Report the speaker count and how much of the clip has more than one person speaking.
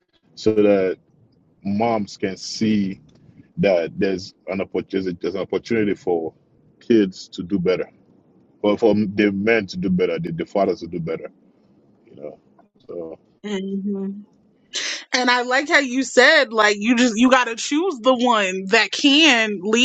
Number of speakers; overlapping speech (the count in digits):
2, no overlap